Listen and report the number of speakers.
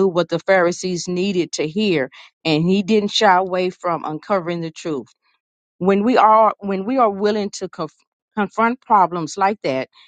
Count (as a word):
one